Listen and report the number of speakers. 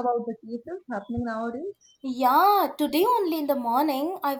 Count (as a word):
two